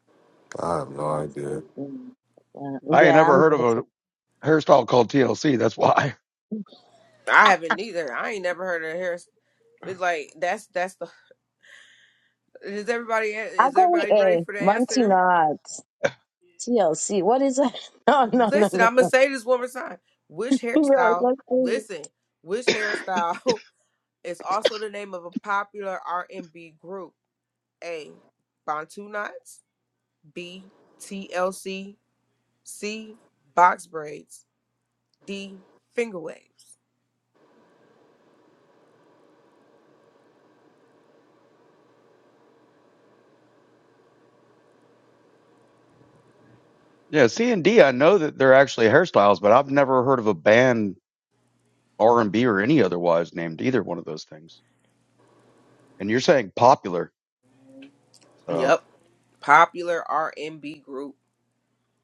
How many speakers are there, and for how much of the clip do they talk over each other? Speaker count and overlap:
four, about 7%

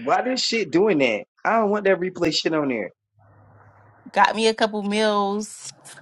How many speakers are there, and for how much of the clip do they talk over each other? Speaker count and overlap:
two, no overlap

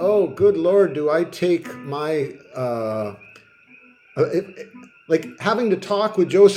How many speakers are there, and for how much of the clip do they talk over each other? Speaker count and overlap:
one, no overlap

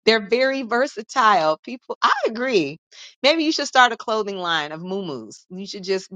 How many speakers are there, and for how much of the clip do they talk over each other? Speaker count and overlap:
one, no overlap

